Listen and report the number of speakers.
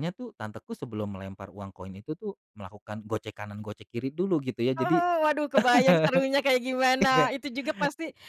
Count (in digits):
2